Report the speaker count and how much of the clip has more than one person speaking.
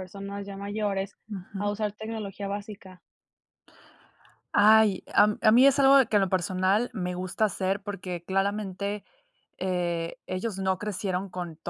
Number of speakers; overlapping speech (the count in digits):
2, about 1%